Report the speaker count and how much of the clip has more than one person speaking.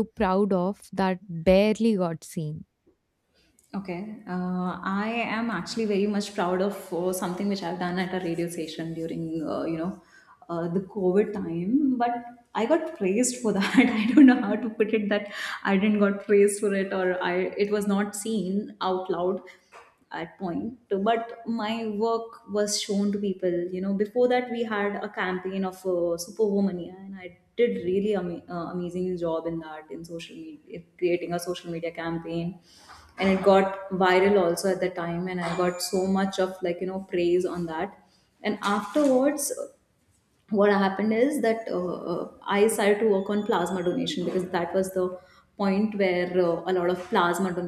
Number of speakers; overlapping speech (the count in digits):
2, no overlap